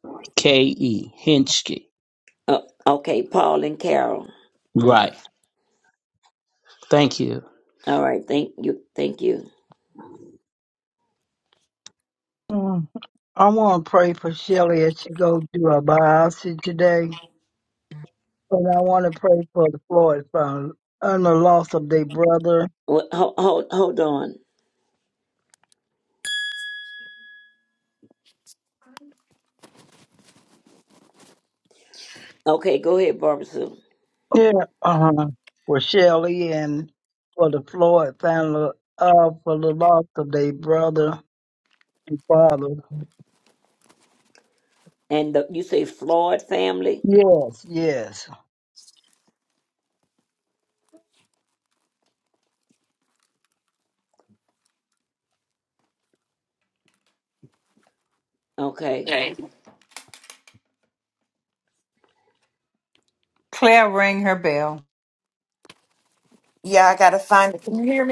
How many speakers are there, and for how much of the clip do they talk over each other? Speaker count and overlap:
5, under 1%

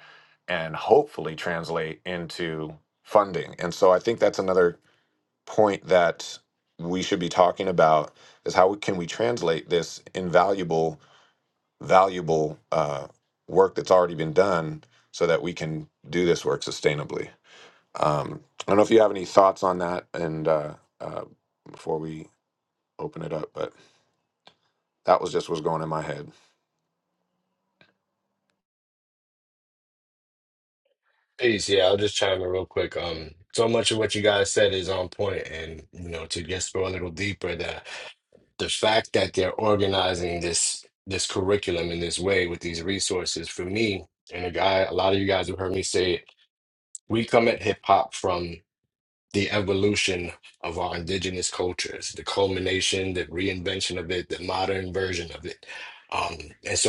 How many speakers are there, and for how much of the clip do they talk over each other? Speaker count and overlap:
2, no overlap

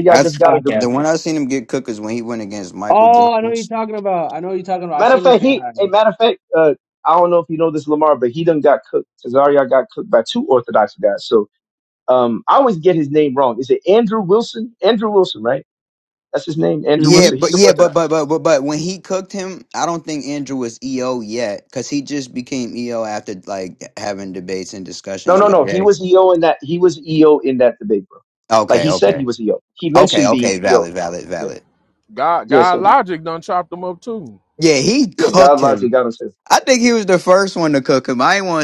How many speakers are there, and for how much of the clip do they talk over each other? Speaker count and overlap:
4, about 17%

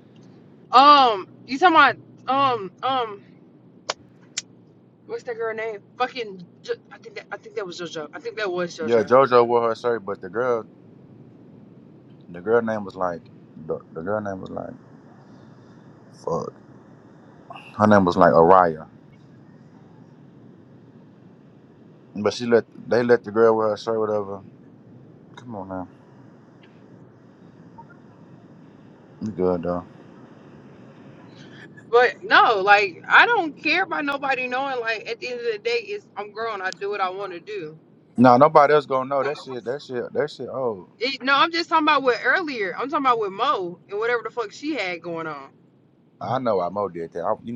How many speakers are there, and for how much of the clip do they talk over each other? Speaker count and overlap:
2, about 1%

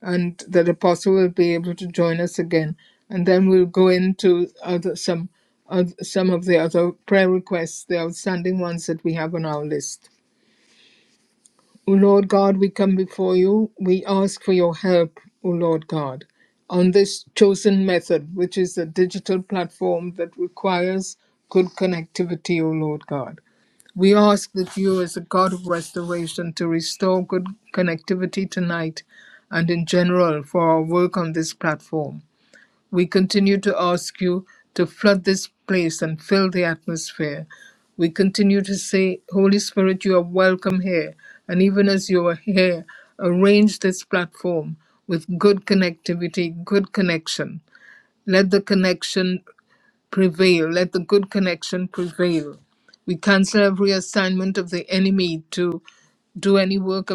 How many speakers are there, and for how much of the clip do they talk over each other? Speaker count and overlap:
1, no overlap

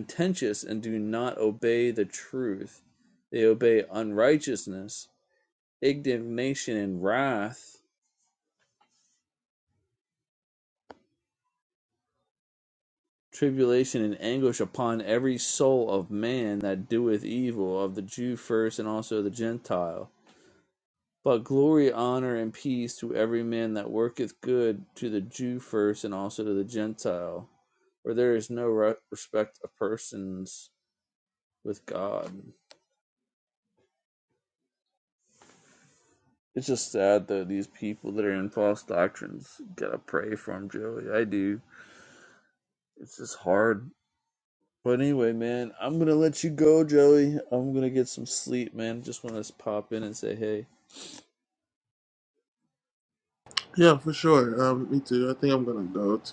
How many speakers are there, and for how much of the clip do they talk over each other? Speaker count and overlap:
2, no overlap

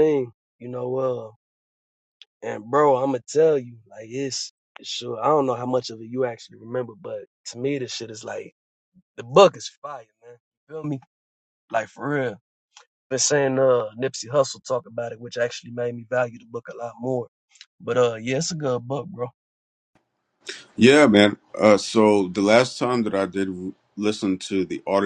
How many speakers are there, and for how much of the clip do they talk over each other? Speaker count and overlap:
2, no overlap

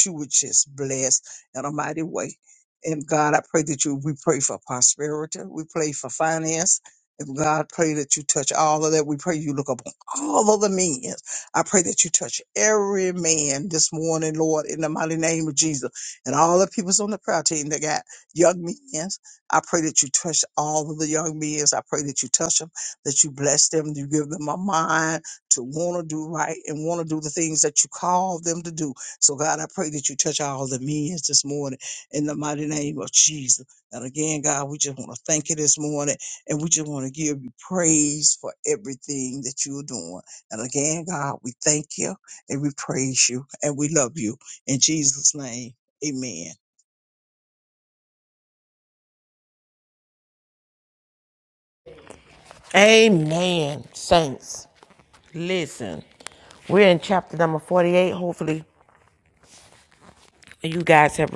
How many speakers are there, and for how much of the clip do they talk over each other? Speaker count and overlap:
2, no overlap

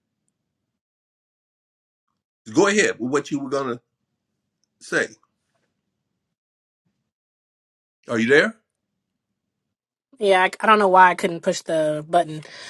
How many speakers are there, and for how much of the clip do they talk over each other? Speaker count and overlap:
2, no overlap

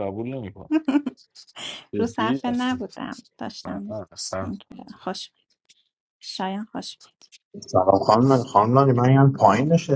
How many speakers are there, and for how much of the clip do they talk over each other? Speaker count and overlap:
3, about 13%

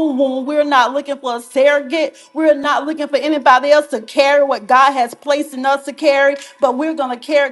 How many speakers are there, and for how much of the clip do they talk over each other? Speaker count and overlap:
1, no overlap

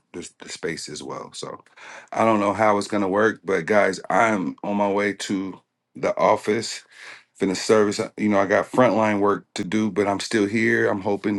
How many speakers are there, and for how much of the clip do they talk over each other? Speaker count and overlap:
1, no overlap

